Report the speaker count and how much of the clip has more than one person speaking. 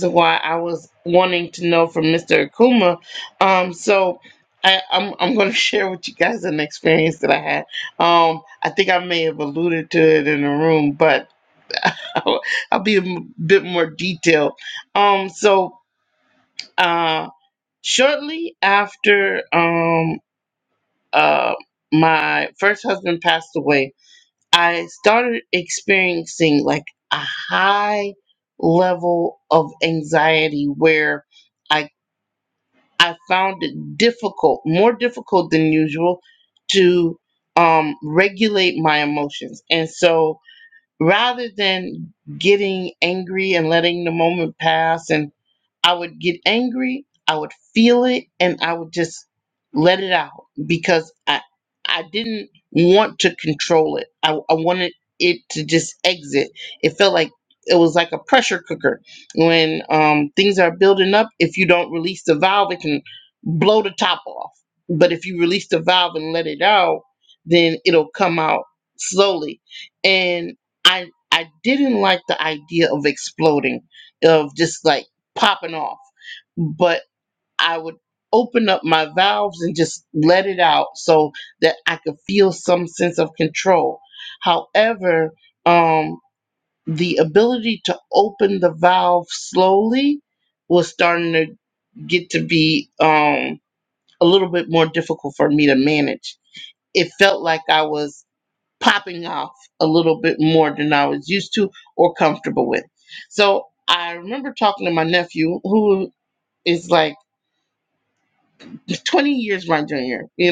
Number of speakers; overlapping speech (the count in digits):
1, no overlap